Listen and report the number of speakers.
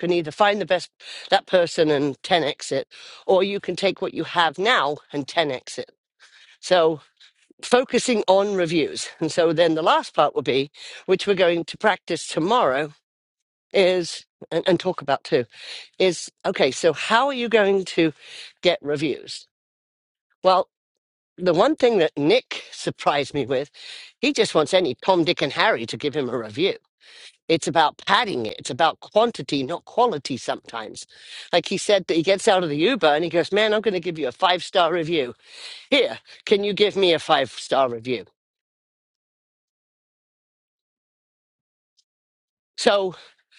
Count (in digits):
1